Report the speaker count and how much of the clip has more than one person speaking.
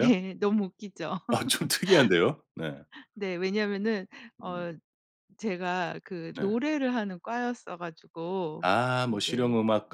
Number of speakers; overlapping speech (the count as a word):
two, about 9%